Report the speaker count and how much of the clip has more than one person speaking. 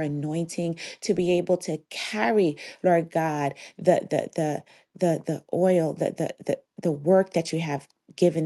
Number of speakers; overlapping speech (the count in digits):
1, no overlap